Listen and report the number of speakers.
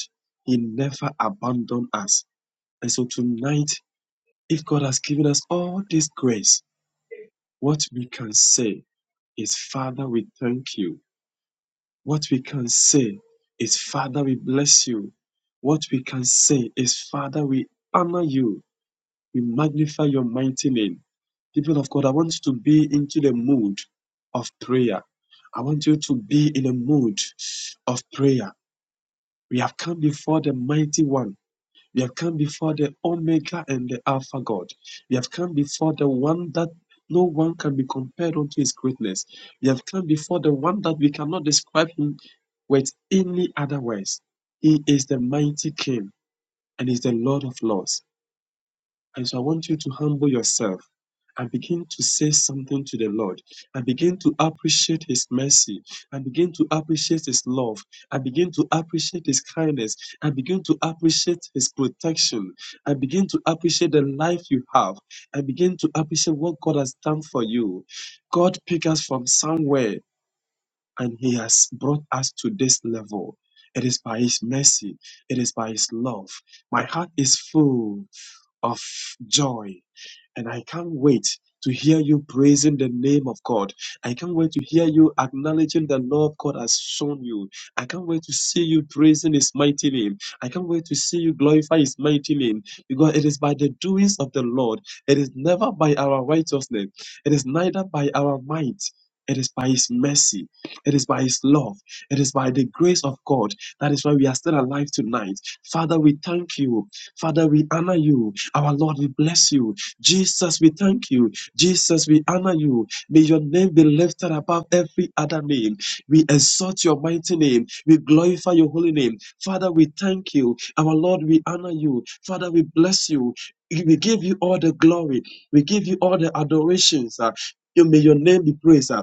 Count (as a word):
one